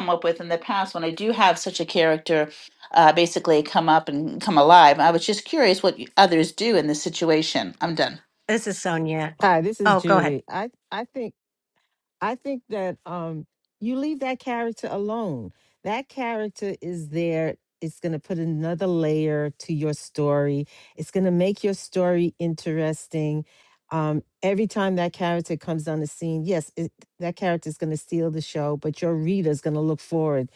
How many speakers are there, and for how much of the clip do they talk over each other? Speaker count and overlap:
3, about 2%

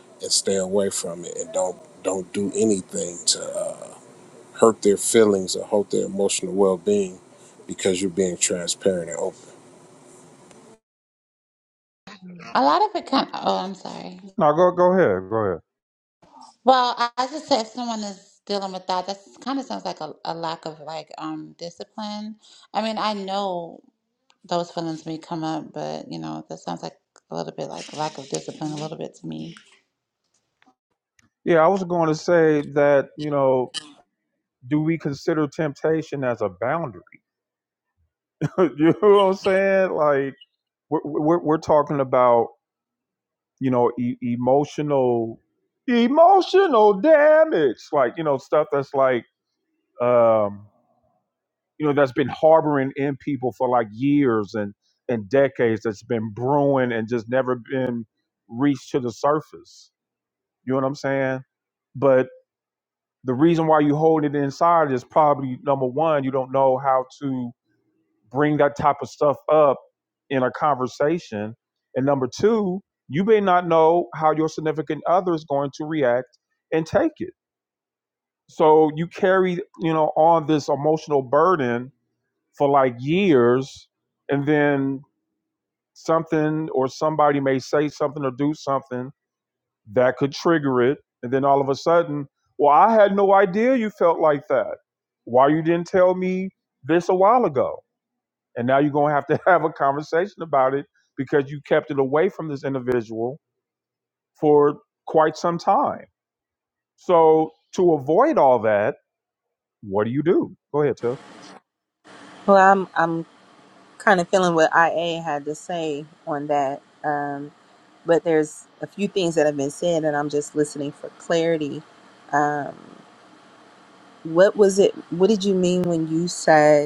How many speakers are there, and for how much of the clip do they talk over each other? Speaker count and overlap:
4, no overlap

